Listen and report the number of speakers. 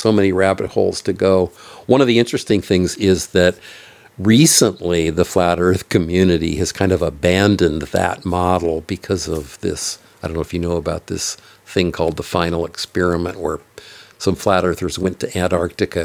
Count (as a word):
one